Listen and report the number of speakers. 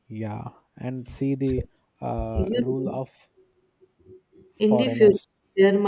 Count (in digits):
2